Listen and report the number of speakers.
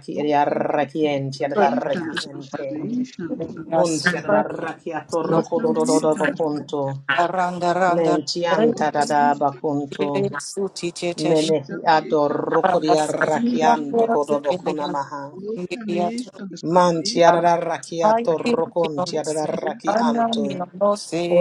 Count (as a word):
three